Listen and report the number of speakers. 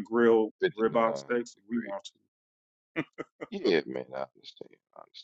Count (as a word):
two